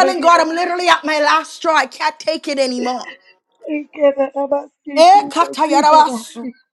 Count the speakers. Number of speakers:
2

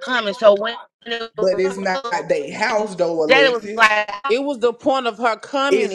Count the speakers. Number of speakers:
3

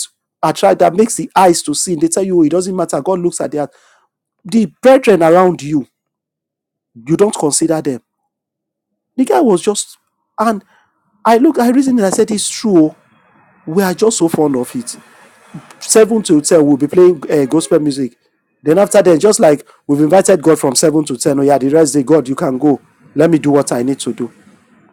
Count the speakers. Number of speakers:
1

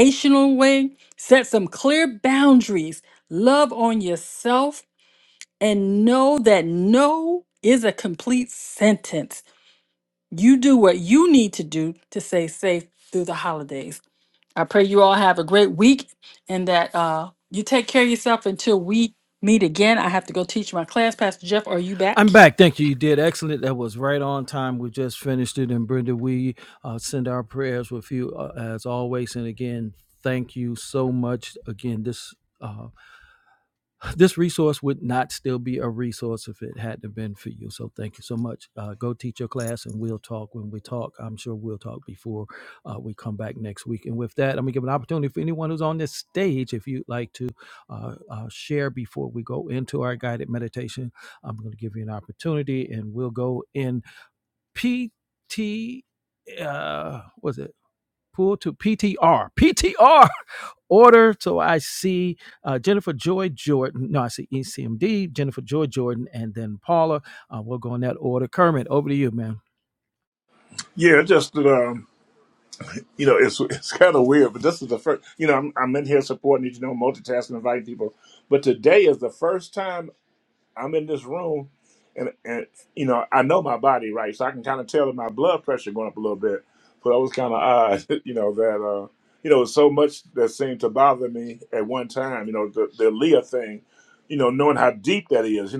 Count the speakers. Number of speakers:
3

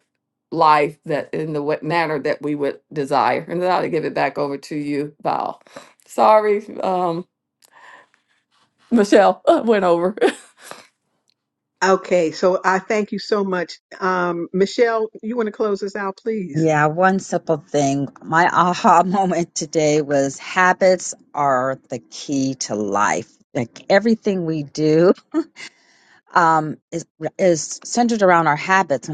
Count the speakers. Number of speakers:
3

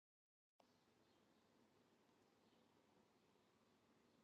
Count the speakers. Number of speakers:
0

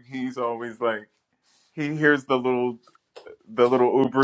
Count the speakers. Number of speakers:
1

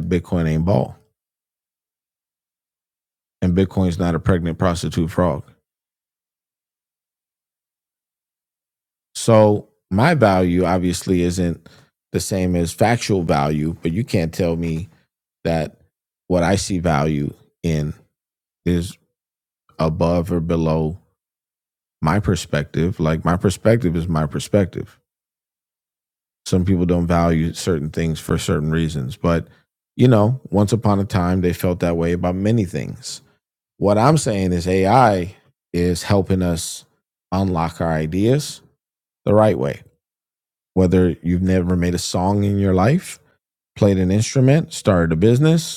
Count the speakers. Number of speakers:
1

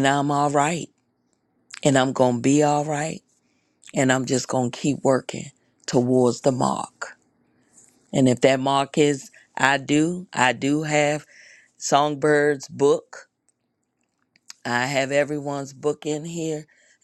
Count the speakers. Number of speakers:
1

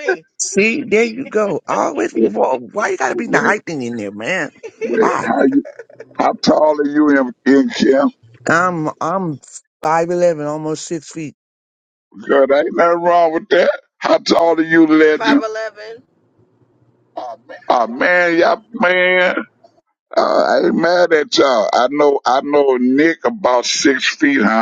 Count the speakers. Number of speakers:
3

